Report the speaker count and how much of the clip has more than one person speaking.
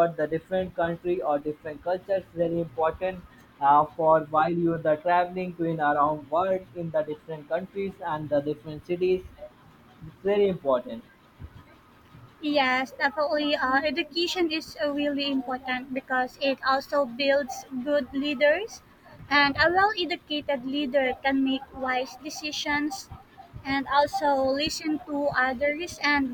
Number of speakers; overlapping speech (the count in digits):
2, no overlap